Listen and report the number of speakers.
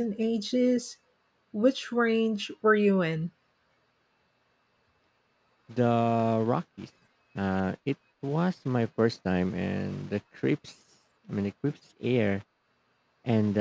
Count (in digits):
2